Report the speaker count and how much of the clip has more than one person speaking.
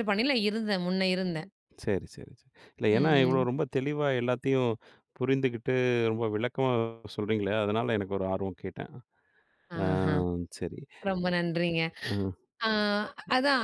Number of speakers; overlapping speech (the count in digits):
2, about 5%